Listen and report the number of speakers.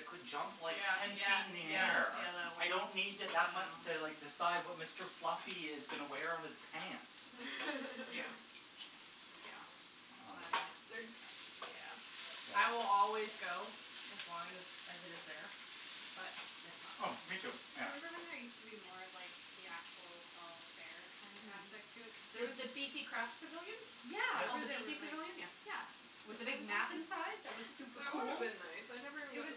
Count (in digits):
4